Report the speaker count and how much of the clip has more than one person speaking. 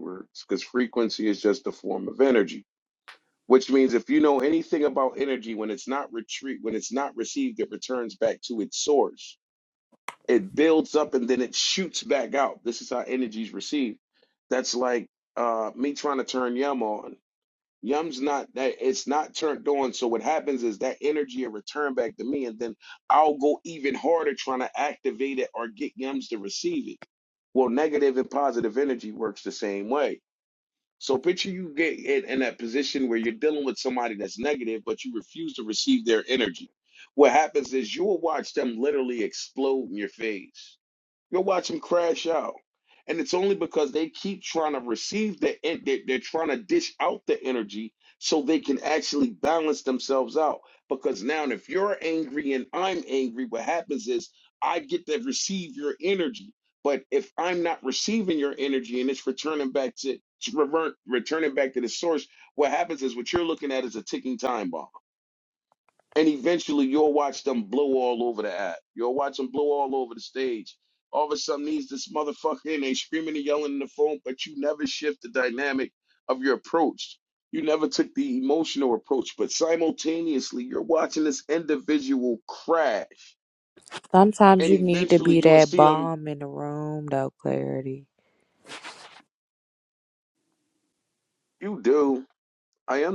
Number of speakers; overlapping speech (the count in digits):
2, about 2%